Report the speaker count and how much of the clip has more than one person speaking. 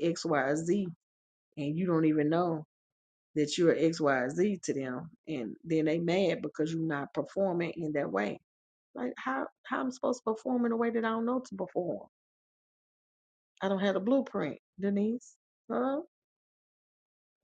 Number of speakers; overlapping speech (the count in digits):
1, no overlap